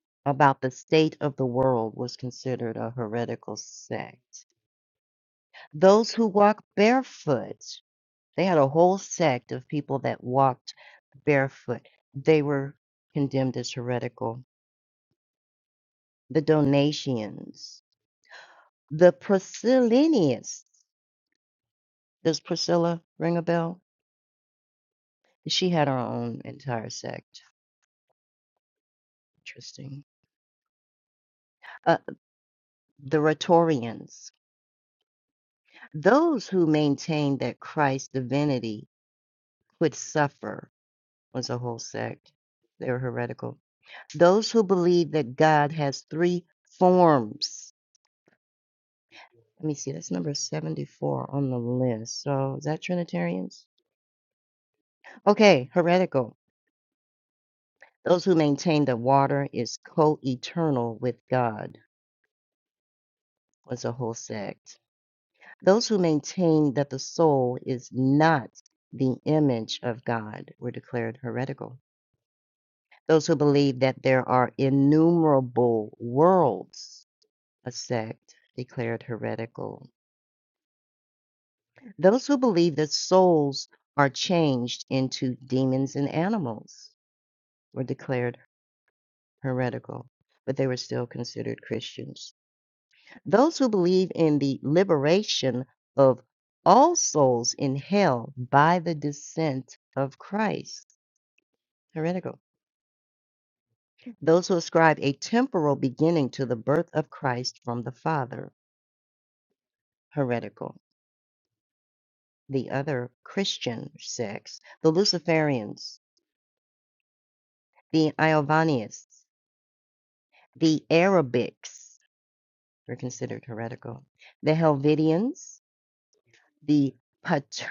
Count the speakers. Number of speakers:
one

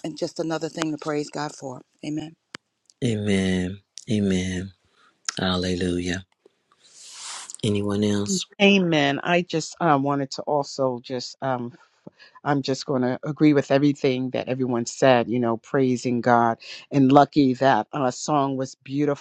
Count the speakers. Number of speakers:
three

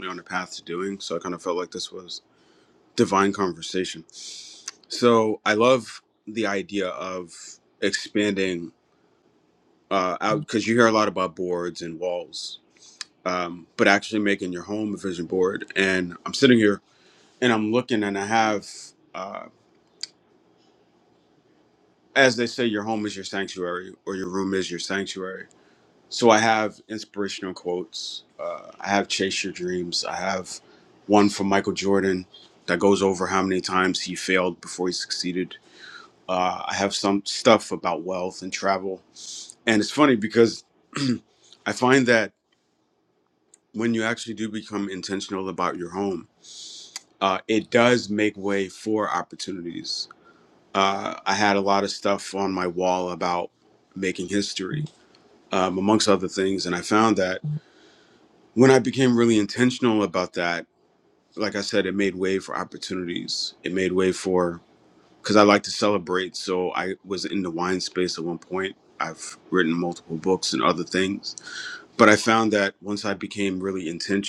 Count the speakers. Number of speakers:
one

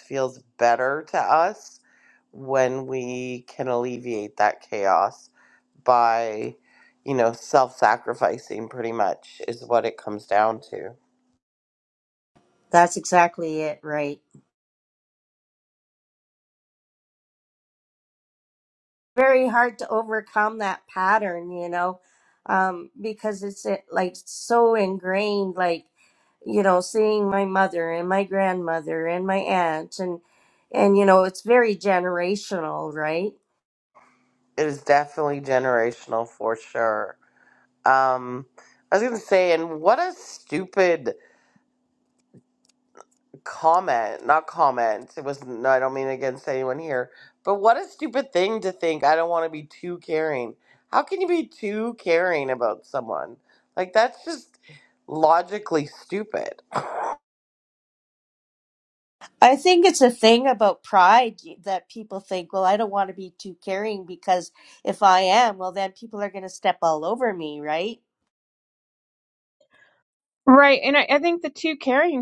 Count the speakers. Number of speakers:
three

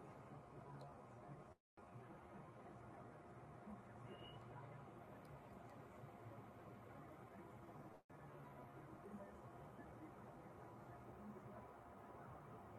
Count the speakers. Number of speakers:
zero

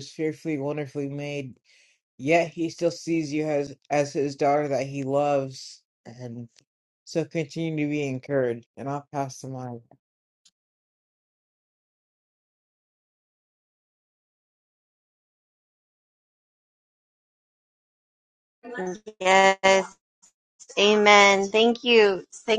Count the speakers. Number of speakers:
two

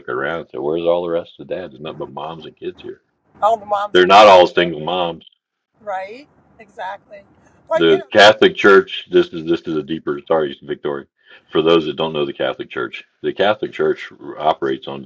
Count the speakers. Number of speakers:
two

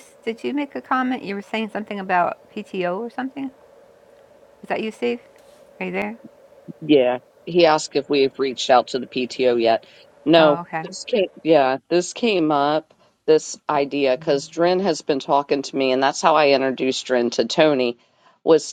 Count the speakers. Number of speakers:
two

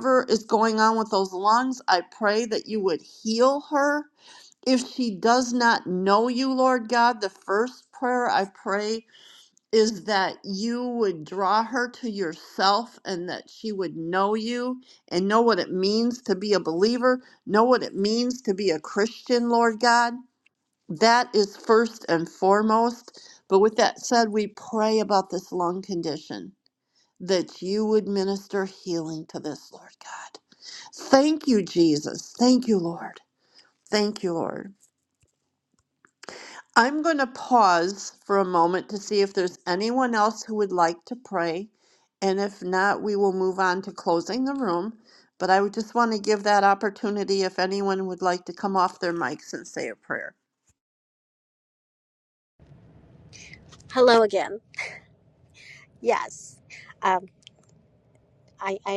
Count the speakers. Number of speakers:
two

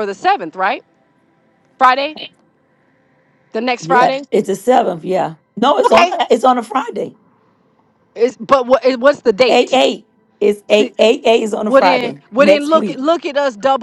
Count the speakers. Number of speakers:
two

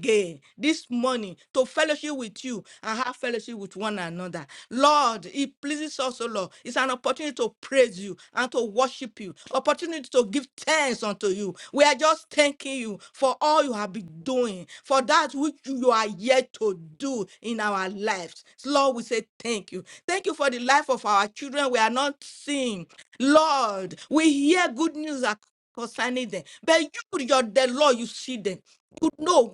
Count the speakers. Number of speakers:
one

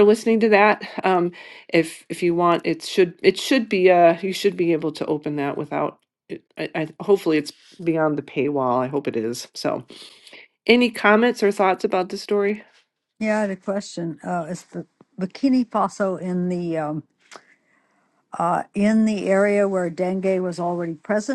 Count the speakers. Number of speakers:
two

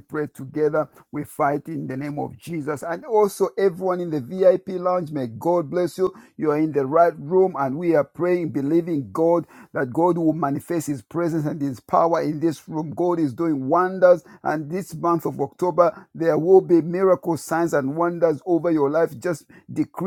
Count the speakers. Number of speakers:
one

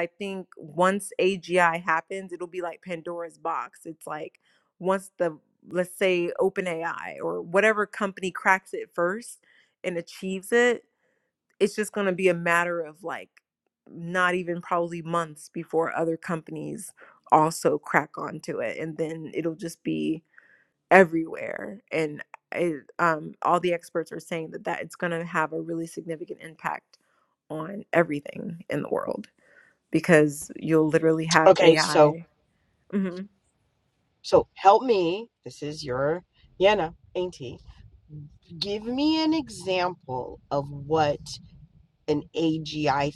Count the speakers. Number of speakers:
two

